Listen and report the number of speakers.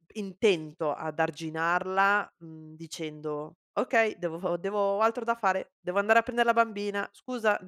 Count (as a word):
one